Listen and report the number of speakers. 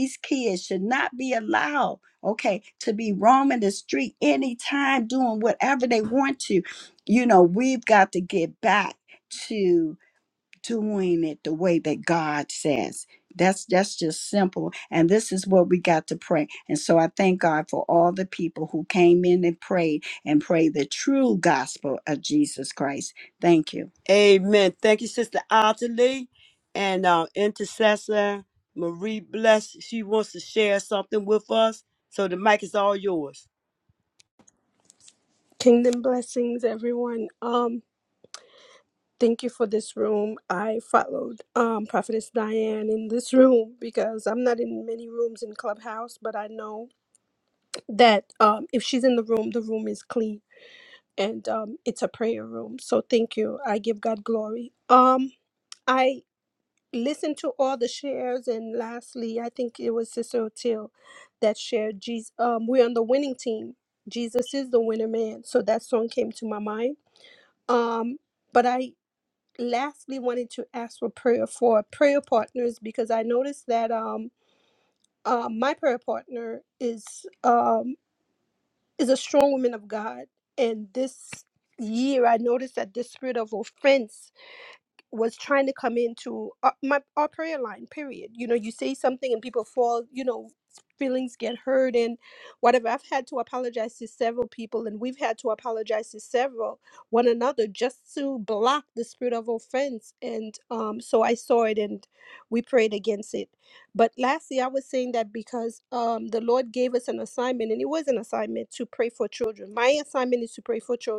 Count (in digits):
3